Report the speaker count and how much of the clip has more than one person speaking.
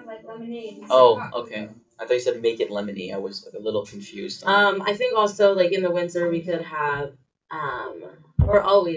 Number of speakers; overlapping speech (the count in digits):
3, about 12%